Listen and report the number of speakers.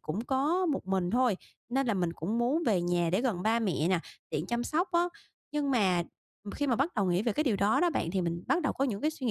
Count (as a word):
one